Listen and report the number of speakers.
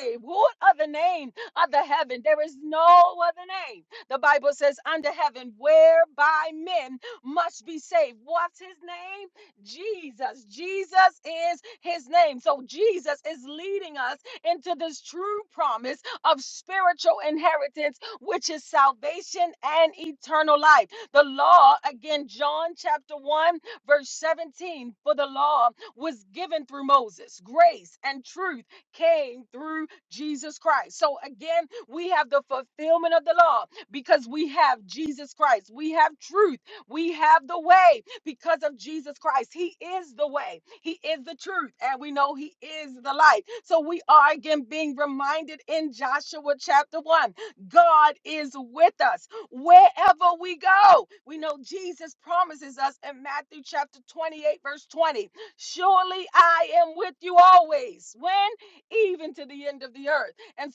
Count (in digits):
1